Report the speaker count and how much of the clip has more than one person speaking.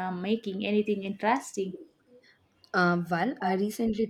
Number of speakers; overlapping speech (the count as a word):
two, no overlap